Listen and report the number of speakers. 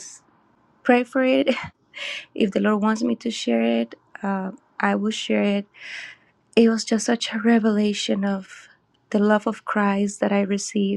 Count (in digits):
1